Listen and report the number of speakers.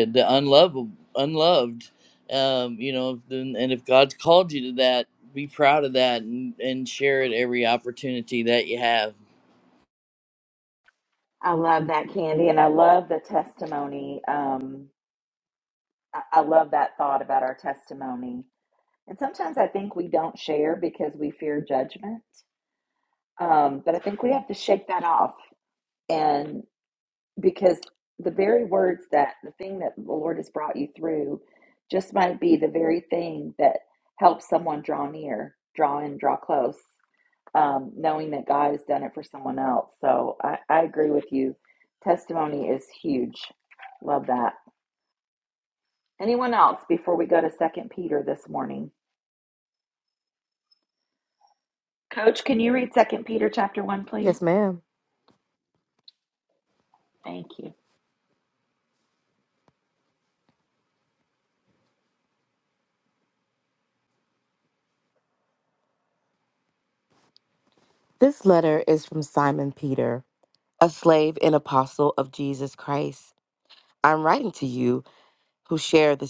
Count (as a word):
three